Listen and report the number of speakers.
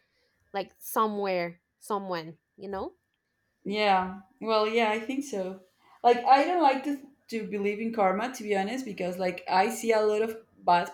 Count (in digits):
2